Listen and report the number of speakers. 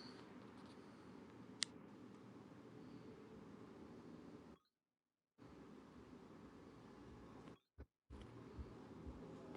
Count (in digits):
0